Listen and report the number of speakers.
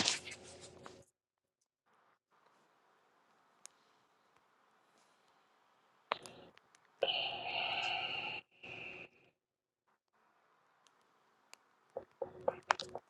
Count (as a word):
zero